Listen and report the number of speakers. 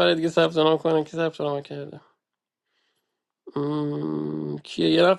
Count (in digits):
1